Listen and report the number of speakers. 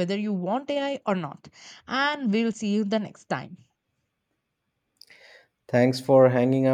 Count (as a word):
two